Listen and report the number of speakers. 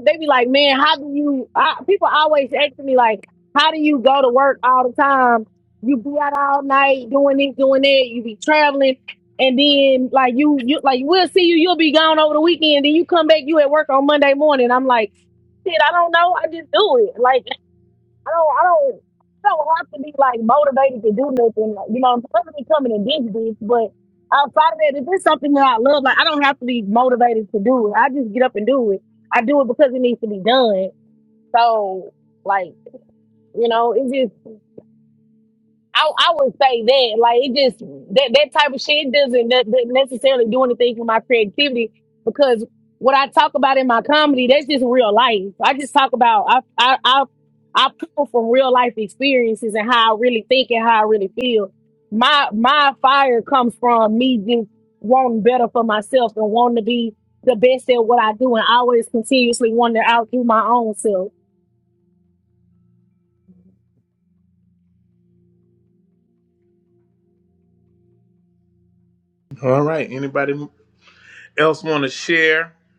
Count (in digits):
2